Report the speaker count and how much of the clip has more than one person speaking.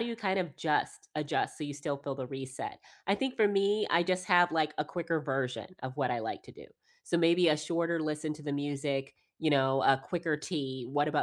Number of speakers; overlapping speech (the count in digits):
1, no overlap